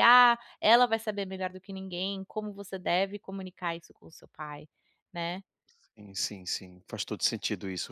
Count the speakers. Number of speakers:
2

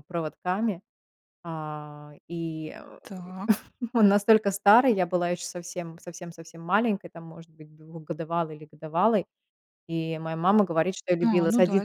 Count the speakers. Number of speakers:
2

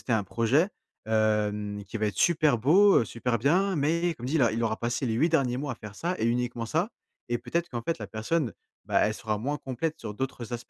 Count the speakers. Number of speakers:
1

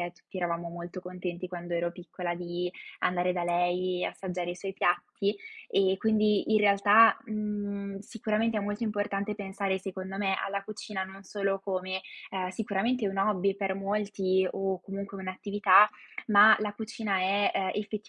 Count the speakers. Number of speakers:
1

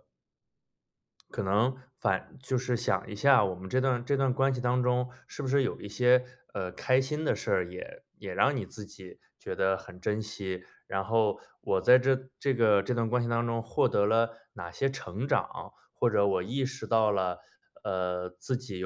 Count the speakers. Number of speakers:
1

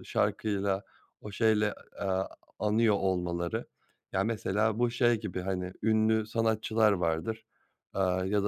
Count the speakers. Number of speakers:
1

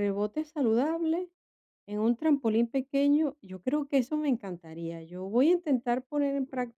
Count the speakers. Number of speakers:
1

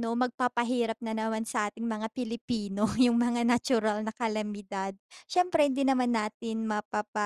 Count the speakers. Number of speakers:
1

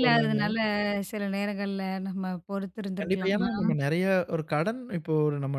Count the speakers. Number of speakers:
2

